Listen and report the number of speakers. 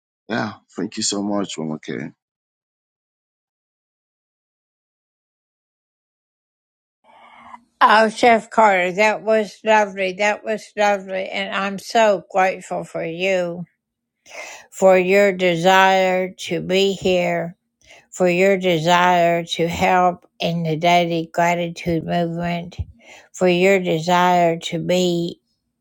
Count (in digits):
2